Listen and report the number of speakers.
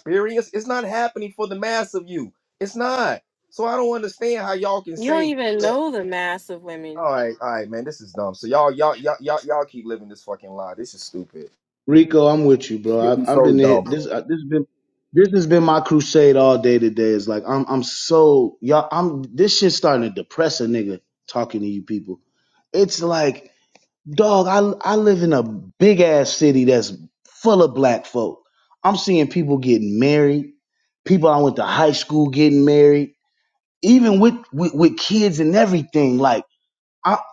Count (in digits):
3